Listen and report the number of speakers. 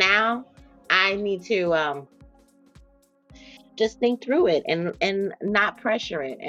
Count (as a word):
one